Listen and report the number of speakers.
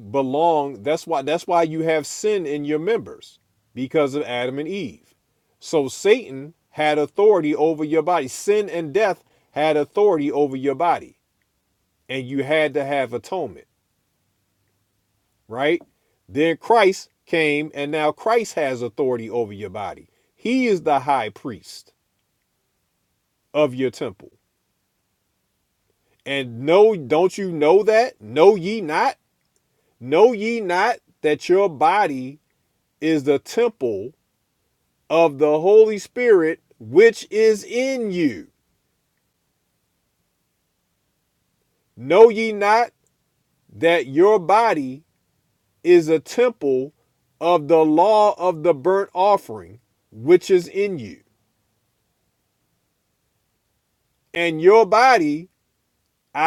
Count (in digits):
1